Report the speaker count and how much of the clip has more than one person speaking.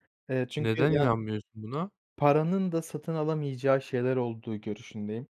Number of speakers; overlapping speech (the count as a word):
two, about 10%